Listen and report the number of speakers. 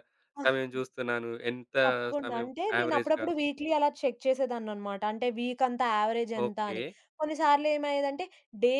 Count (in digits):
2